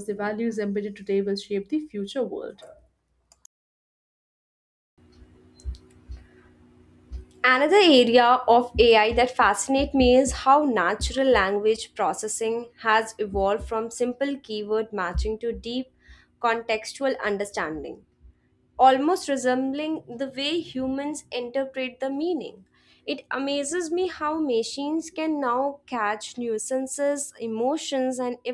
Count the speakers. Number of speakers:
two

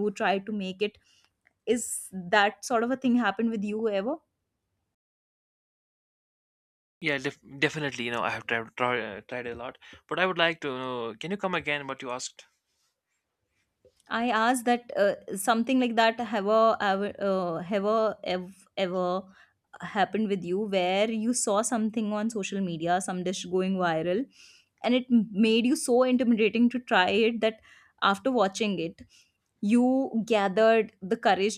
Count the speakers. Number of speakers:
two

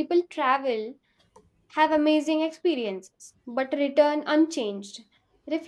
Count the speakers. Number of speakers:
one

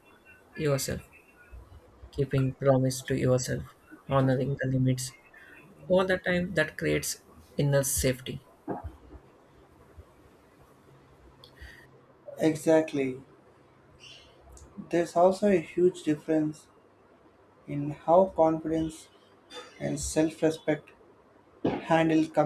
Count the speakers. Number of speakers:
two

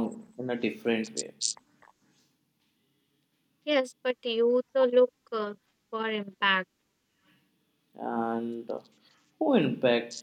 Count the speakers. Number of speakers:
two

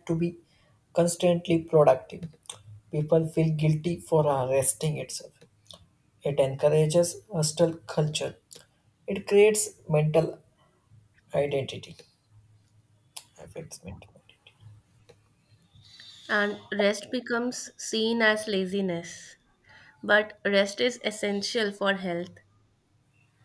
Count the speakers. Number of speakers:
two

